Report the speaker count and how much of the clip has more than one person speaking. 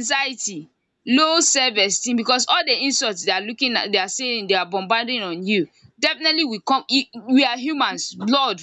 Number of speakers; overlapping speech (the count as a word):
one, no overlap